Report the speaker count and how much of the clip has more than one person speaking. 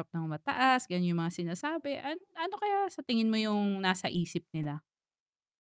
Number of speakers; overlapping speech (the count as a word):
one, no overlap